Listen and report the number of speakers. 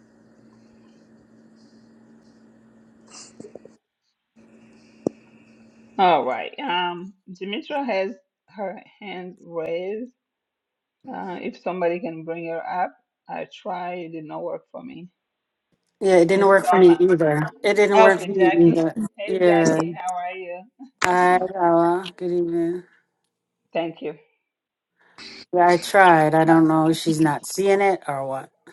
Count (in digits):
2